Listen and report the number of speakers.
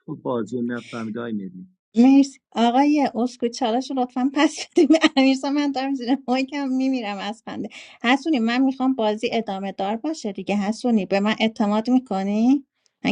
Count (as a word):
two